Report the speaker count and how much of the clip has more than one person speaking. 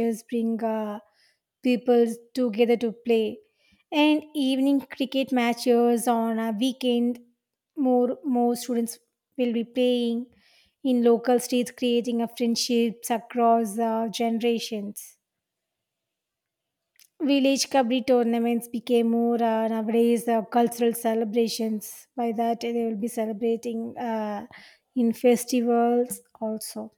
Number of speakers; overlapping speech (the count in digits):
1, no overlap